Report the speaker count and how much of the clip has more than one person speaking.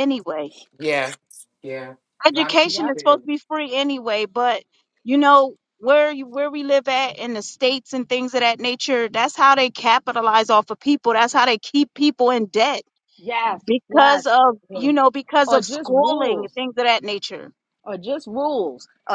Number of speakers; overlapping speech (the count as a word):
three, about 13%